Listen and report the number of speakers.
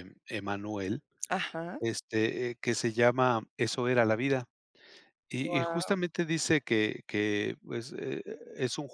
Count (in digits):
2